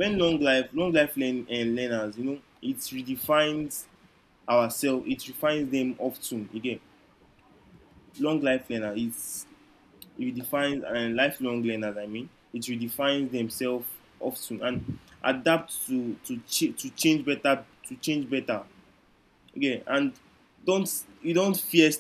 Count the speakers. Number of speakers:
1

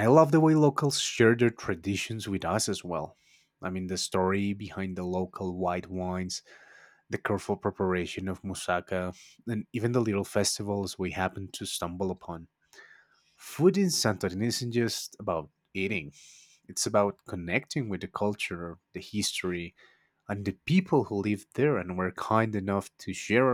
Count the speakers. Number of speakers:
1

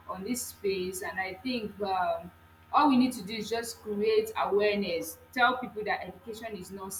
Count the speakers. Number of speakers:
1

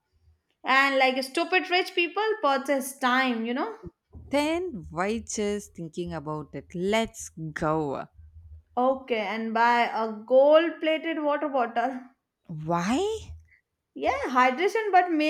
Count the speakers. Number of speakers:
2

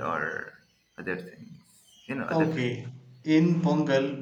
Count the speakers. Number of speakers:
2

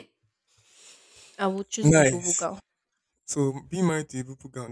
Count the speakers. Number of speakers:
2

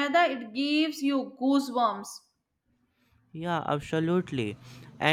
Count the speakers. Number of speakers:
2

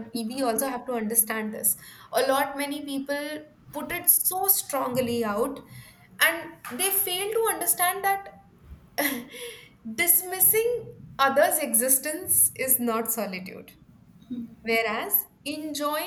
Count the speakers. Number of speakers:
1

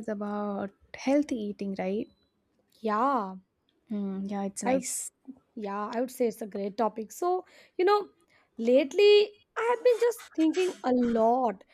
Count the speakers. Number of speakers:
2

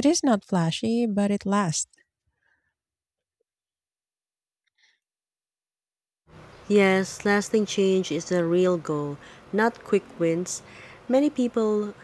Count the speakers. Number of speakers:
2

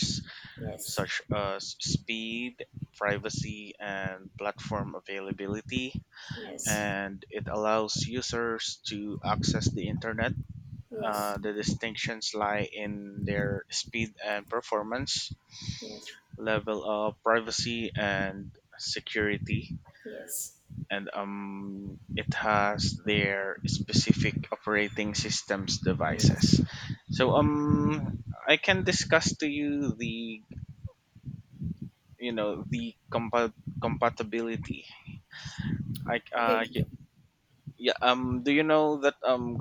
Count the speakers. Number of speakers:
2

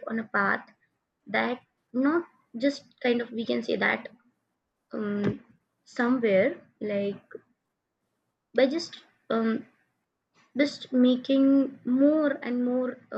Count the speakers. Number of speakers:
1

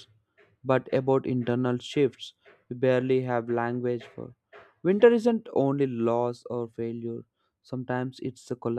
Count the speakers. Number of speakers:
1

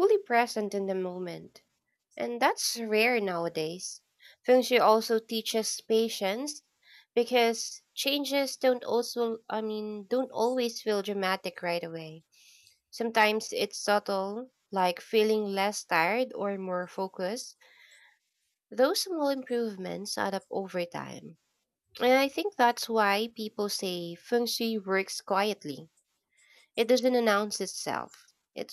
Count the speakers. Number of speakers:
1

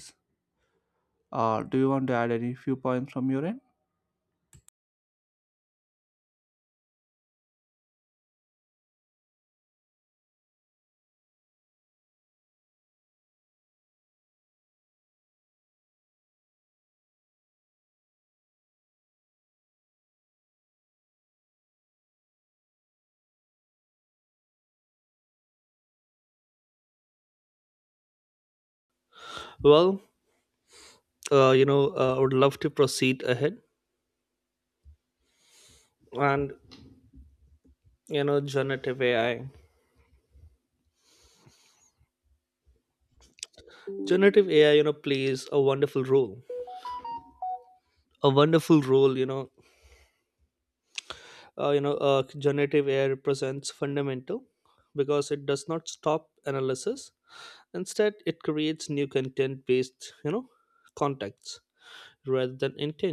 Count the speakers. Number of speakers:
2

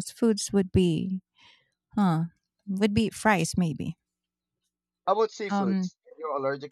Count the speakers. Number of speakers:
2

